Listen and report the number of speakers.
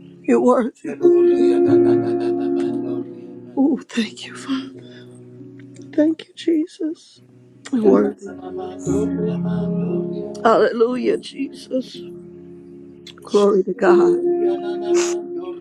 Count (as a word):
two